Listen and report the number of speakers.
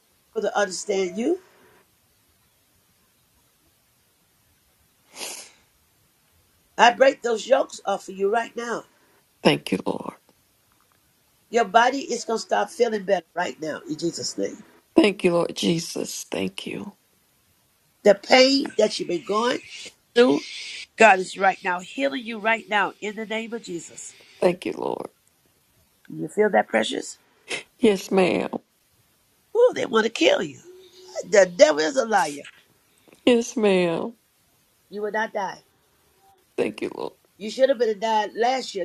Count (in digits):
2